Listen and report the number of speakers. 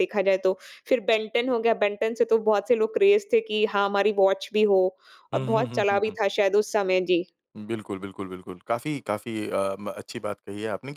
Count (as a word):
two